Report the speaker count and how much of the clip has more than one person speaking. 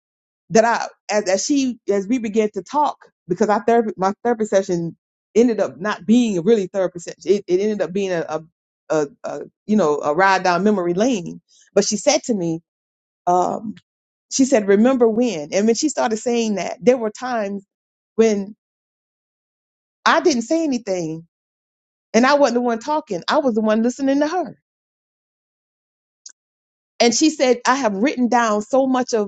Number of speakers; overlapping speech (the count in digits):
1, no overlap